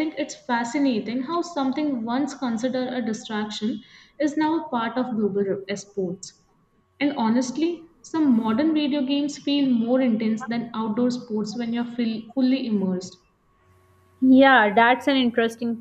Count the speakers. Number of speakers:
2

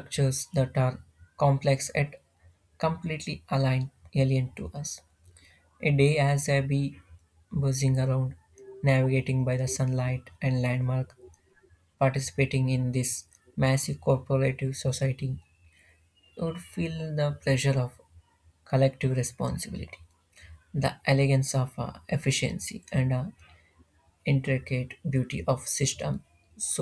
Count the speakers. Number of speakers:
1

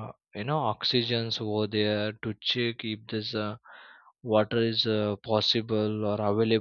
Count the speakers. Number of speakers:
1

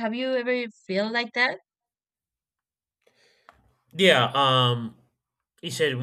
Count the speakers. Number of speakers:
2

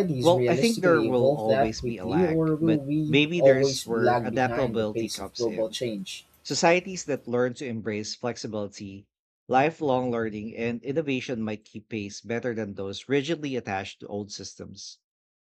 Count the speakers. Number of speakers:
2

